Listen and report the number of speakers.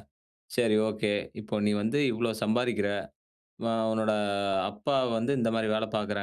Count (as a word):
one